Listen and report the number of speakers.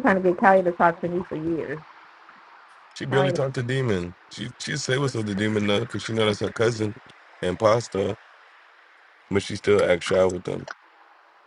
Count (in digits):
2